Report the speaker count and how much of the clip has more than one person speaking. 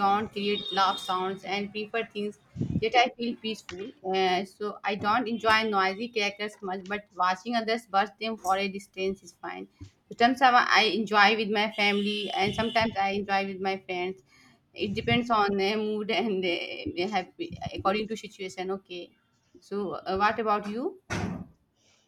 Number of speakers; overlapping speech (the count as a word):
one, no overlap